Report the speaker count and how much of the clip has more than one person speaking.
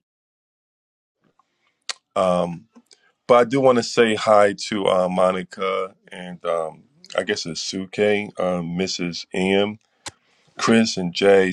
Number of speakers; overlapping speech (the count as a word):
one, no overlap